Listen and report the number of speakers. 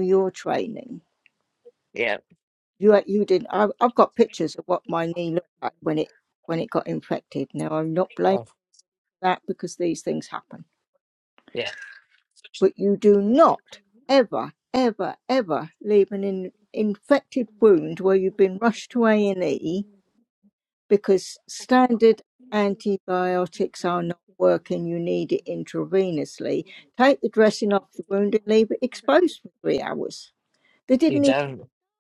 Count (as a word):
two